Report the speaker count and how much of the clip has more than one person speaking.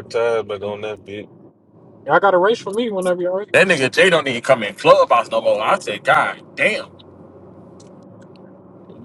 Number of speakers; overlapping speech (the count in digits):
3, no overlap